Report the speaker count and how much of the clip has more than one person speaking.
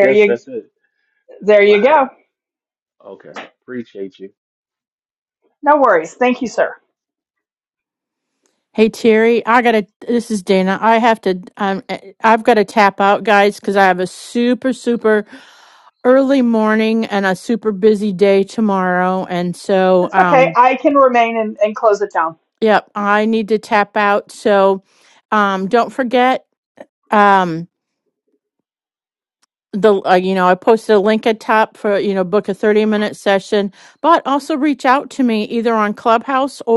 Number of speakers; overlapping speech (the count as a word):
three, about 4%